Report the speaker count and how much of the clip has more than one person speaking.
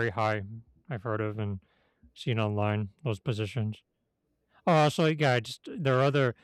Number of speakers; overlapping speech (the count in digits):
1, no overlap